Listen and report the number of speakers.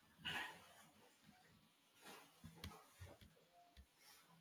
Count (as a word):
zero